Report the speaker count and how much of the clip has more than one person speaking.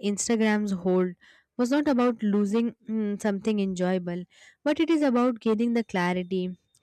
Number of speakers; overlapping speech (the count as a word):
one, no overlap